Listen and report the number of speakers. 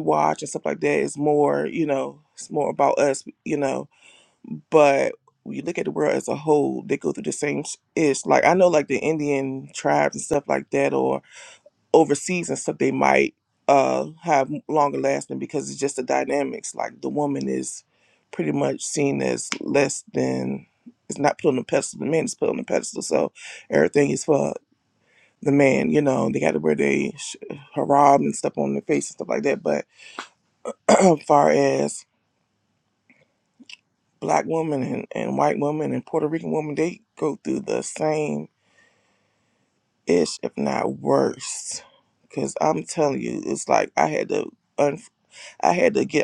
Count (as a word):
one